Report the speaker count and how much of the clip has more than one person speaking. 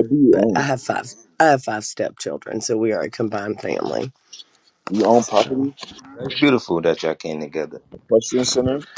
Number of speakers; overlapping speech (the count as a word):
three, about 10%